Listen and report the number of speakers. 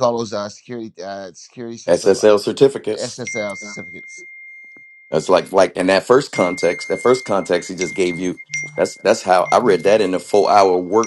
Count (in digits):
2